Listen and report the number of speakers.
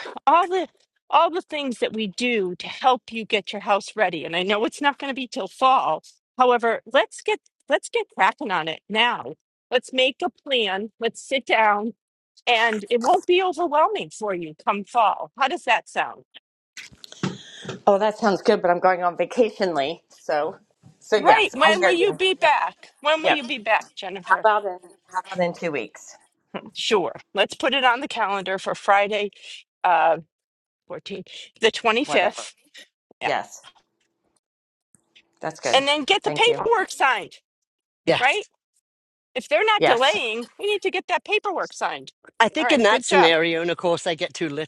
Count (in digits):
3